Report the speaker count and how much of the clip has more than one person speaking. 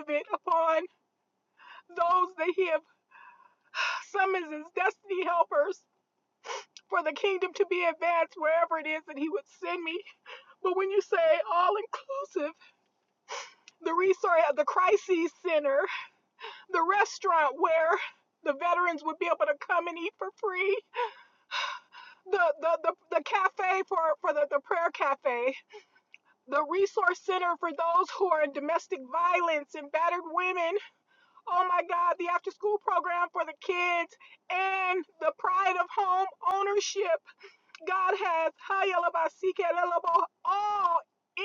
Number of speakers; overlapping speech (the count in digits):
1, no overlap